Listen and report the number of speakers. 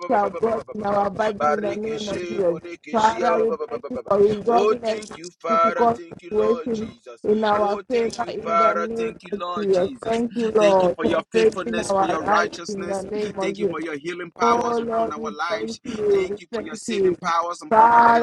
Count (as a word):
two